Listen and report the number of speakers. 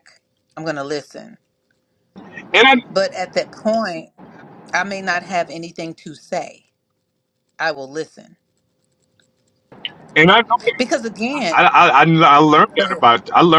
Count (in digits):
2